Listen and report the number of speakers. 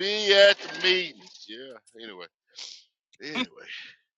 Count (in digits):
1